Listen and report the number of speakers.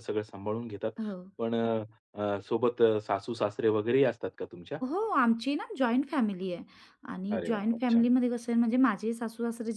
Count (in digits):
2